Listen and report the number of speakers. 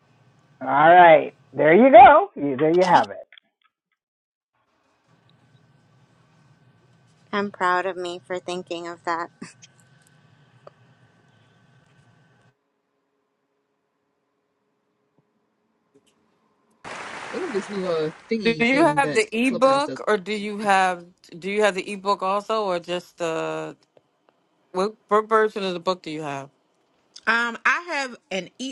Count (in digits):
5